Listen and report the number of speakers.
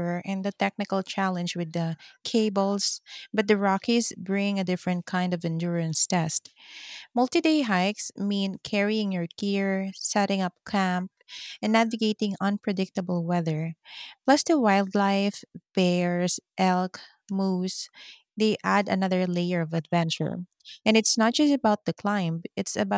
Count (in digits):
1